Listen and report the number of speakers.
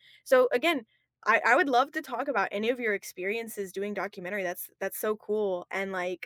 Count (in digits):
1